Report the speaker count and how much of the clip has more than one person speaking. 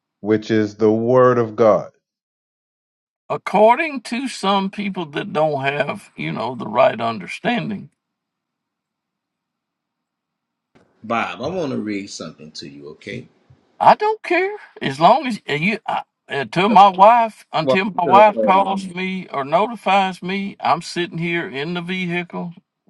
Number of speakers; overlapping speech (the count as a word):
three, about 5%